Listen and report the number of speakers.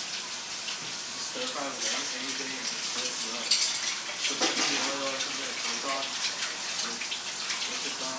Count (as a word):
one